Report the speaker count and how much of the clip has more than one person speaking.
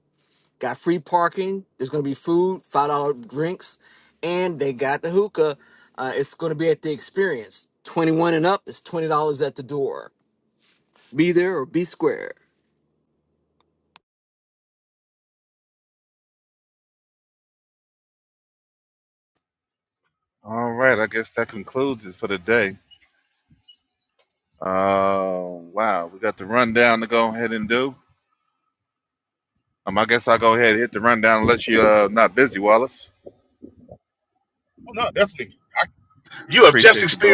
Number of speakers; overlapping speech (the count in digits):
3, about 2%